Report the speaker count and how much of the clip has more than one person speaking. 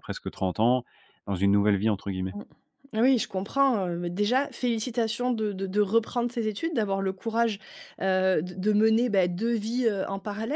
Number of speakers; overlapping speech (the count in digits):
2, no overlap